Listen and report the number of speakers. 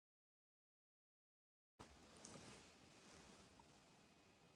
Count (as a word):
zero